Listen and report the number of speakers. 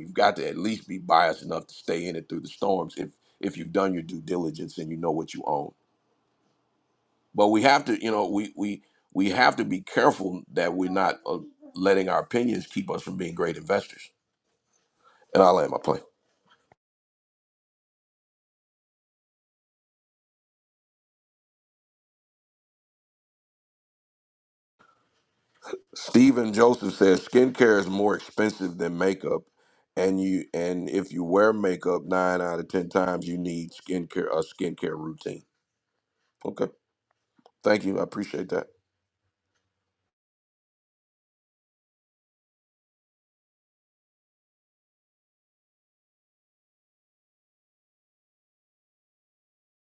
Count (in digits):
1